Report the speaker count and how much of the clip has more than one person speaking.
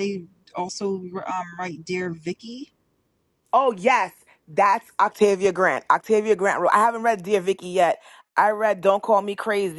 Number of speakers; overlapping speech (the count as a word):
two, no overlap